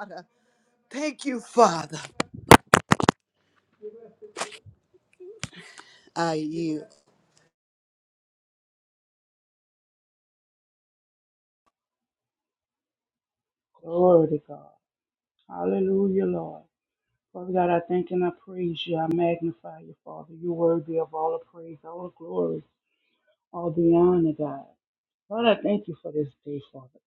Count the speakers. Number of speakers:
2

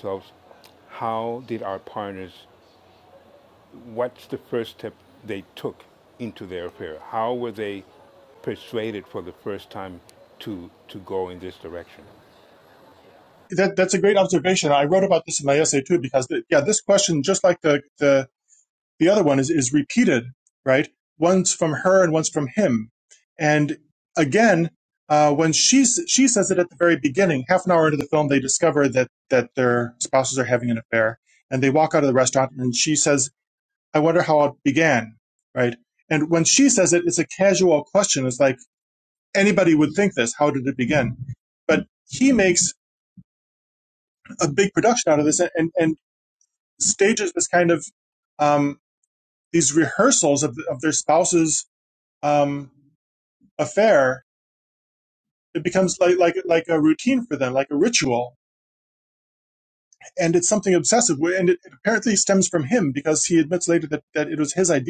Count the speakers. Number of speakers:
2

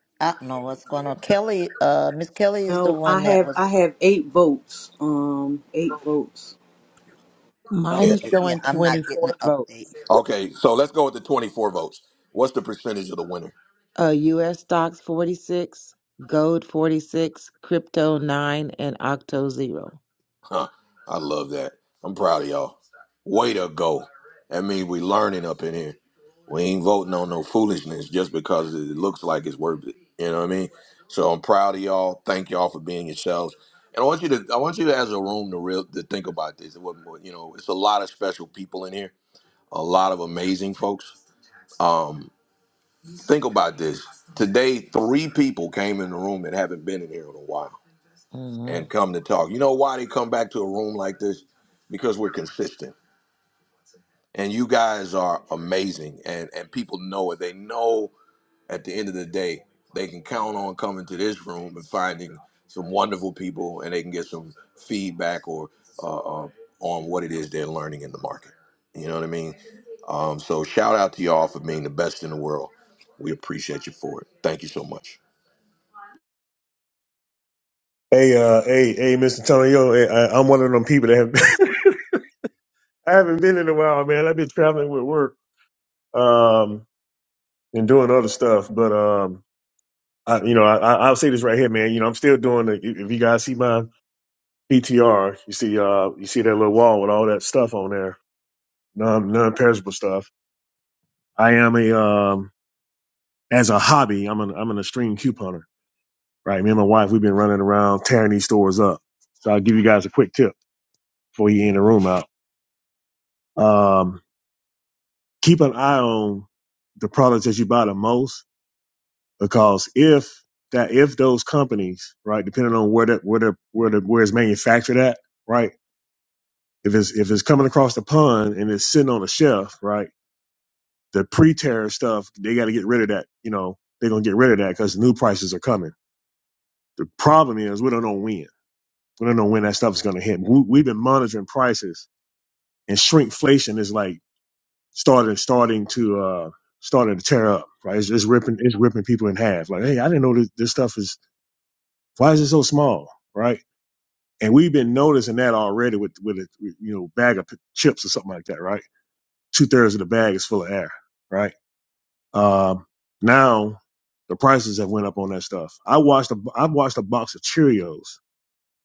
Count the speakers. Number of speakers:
5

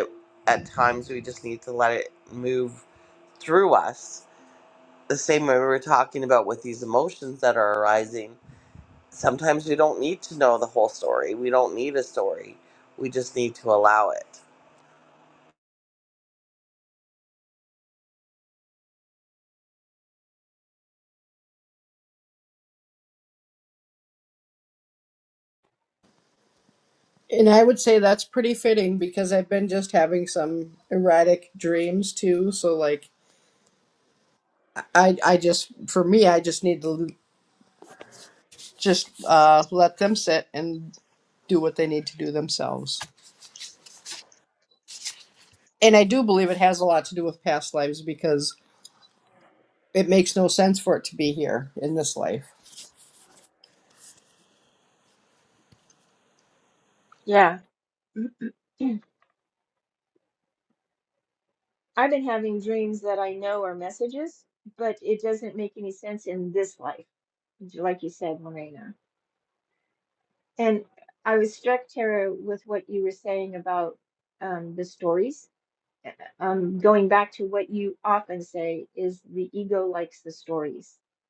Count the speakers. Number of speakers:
3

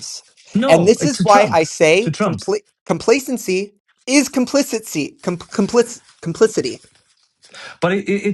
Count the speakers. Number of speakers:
2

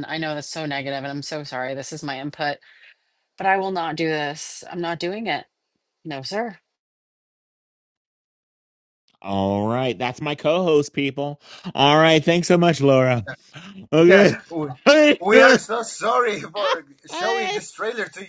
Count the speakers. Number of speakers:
3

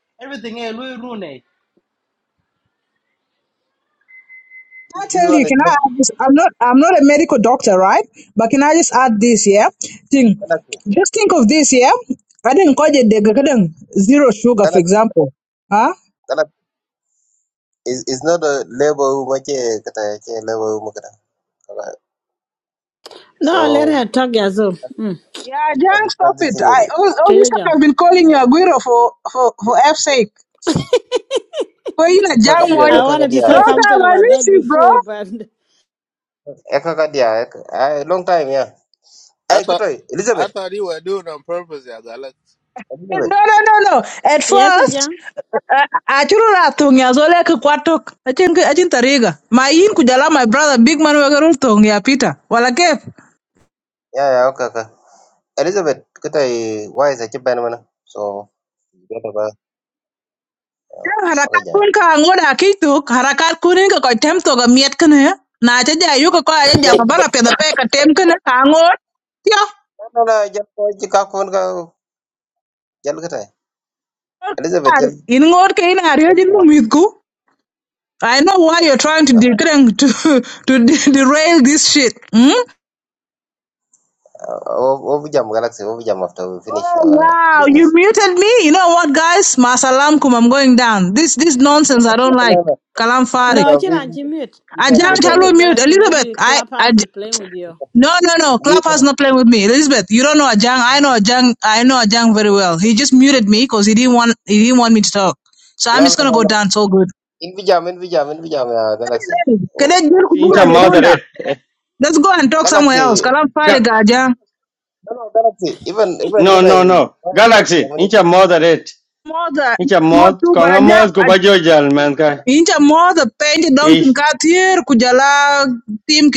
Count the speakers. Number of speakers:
6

